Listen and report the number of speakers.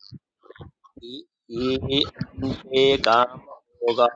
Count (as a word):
one